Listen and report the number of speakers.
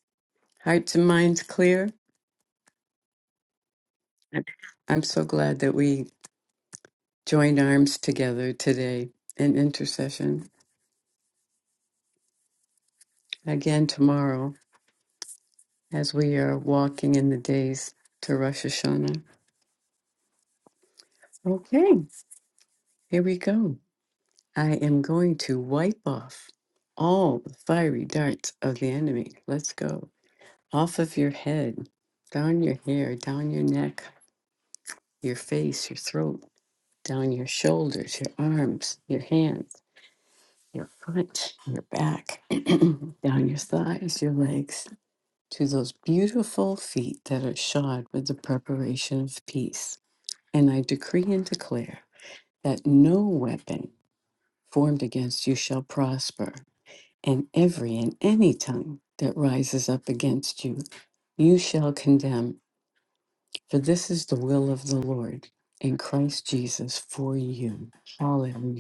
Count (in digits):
1